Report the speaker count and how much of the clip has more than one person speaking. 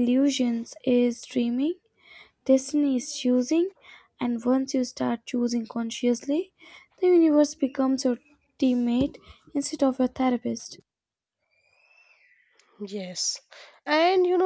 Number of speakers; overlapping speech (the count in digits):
2, no overlap